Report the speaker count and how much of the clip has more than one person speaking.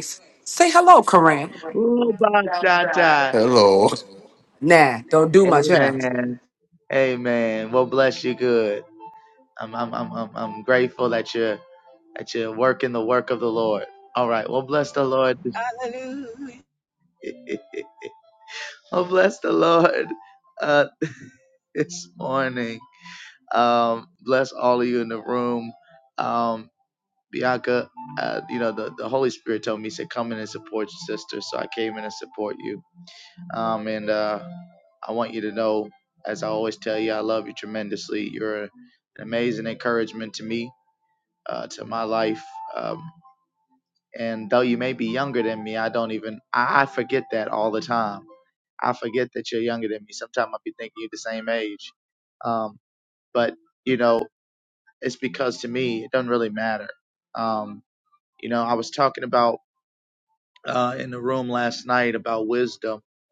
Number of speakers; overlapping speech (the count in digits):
3, about 1%